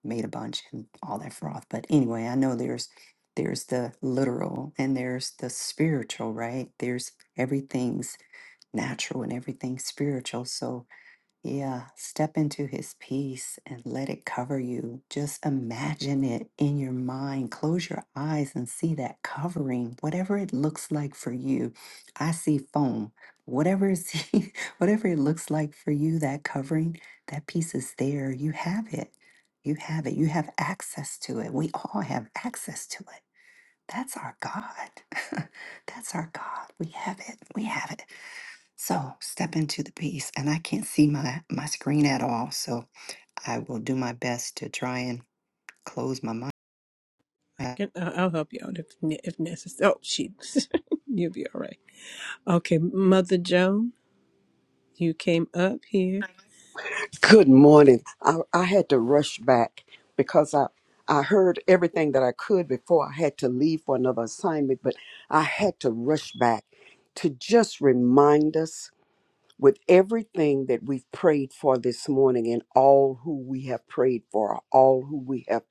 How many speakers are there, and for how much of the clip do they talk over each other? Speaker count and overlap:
3, no overlap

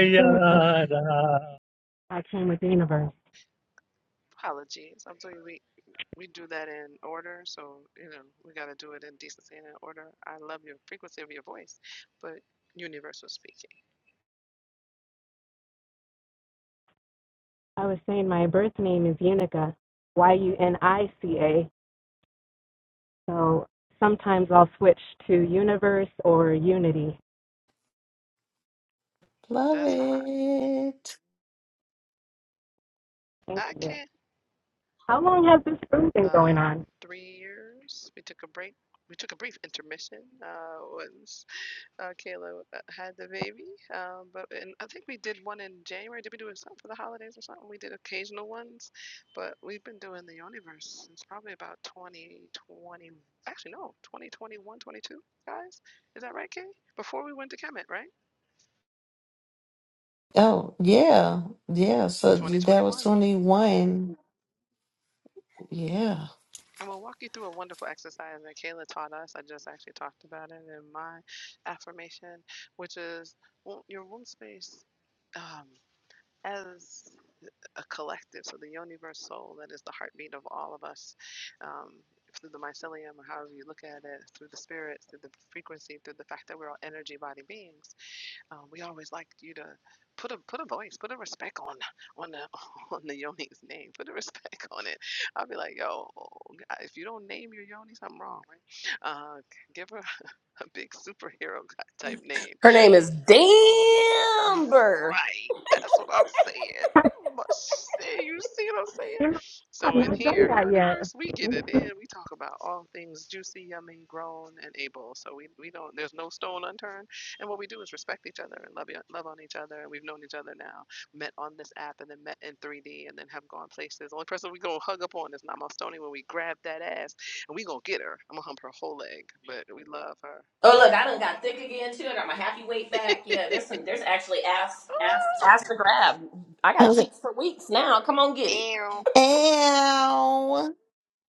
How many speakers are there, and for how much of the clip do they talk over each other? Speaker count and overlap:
5, about 3%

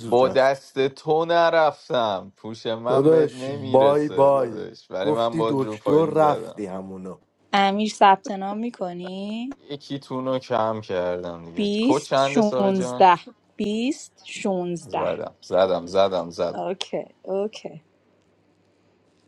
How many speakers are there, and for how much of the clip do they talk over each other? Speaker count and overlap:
3, about 28%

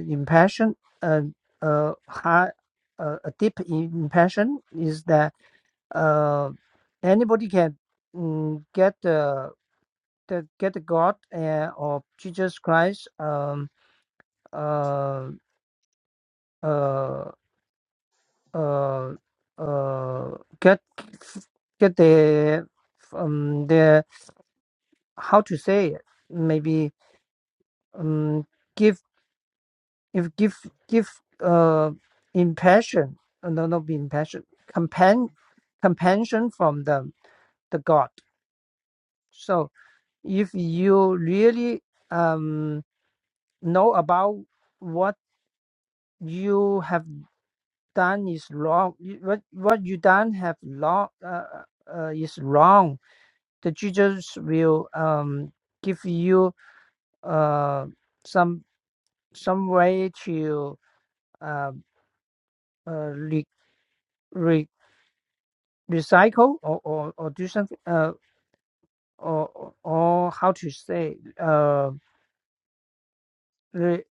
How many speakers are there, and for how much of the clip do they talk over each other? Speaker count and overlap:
1, no overlap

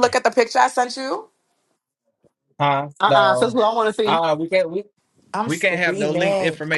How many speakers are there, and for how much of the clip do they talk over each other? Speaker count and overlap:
3, about 28%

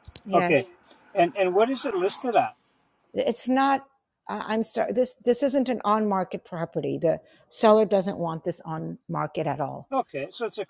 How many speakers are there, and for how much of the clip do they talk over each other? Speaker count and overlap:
2, about 2%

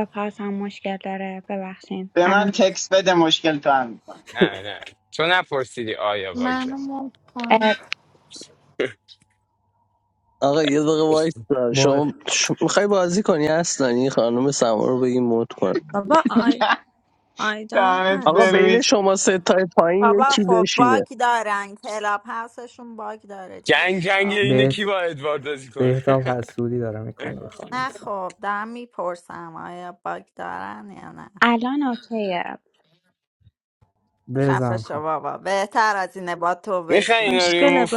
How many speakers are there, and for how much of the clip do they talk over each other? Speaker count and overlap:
8, about 18%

